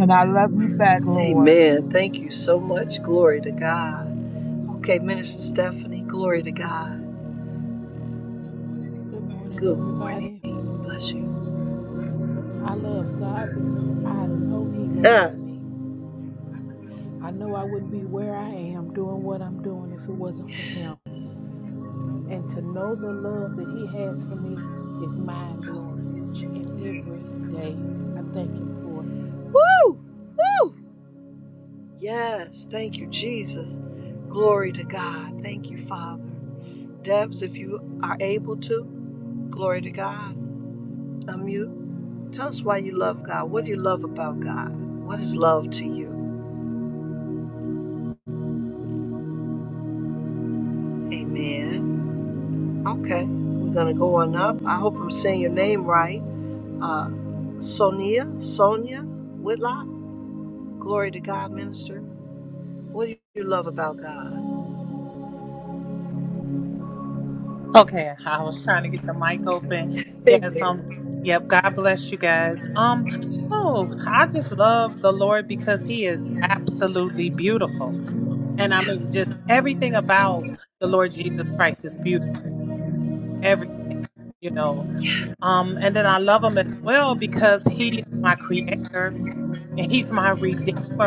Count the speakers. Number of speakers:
4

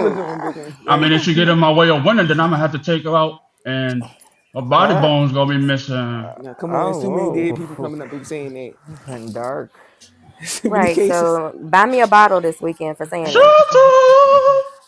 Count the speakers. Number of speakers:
4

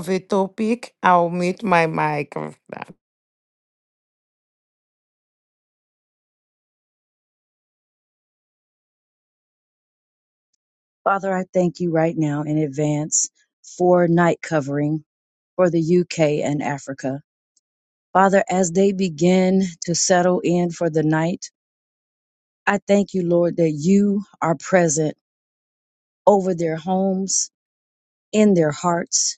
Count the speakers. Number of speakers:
2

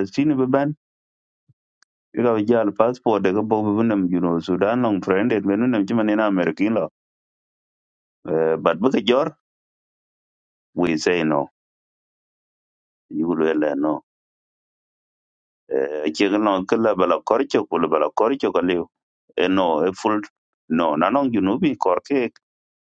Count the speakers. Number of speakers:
1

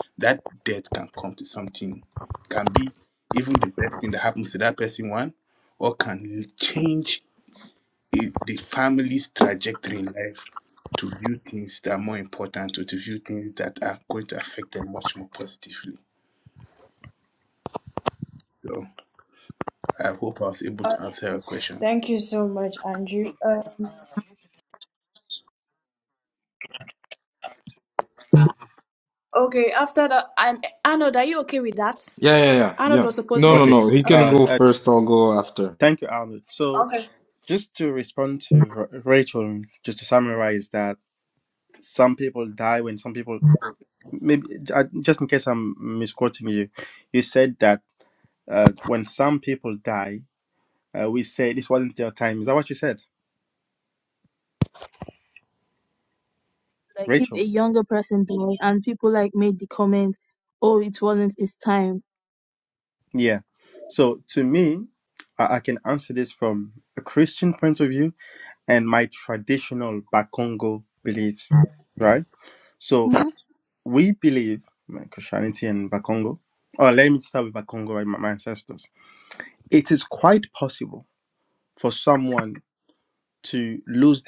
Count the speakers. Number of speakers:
5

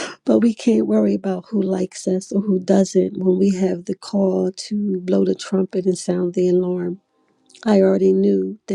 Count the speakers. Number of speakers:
1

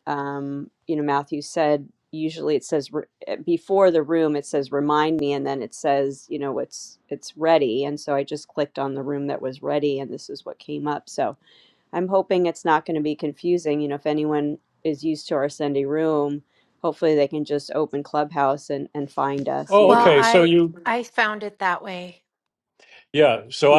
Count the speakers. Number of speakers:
3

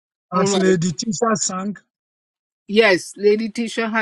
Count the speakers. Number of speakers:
2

